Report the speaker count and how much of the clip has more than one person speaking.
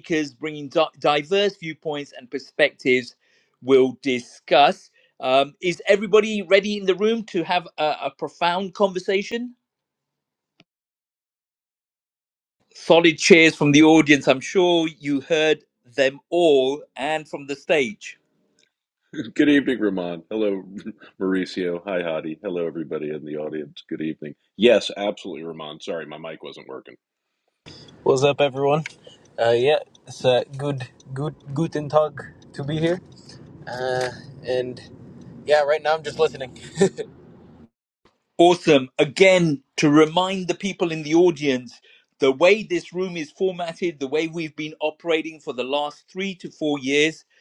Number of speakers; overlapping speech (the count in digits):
3, no overlap